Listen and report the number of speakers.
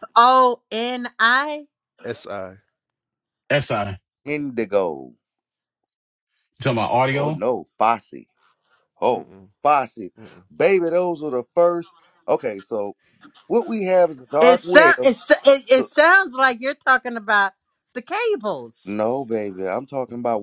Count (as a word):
four